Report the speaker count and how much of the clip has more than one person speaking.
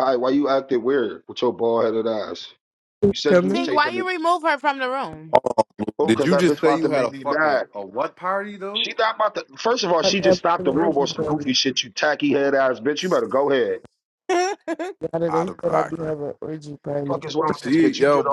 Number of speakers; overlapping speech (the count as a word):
four, about 32%